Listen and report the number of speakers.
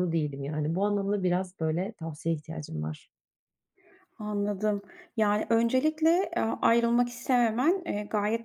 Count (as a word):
two